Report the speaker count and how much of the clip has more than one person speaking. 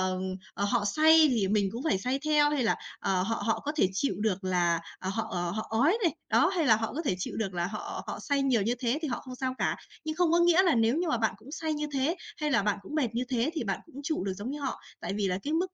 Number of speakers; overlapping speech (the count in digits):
1, no overlap